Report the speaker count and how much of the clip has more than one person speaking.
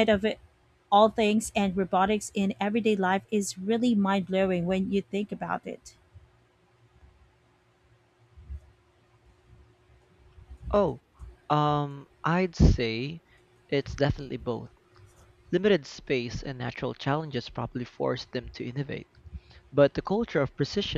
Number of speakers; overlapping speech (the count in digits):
2, no overlap